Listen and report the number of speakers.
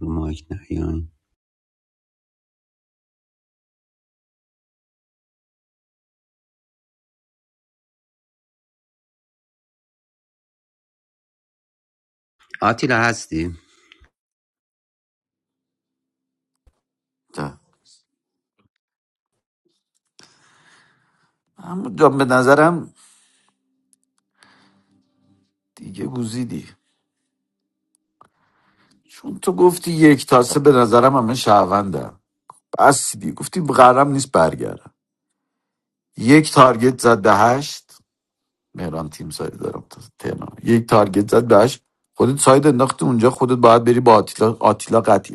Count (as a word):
two